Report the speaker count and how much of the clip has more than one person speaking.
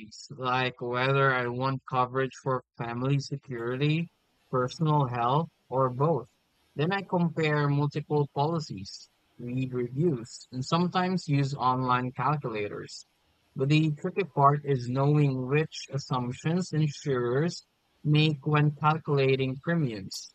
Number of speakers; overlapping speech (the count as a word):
one, no overlap